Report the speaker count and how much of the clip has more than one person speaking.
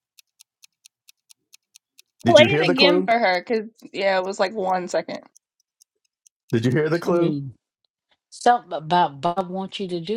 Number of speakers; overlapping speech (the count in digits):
3, about 12%